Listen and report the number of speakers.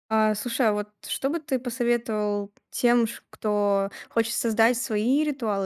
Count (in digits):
1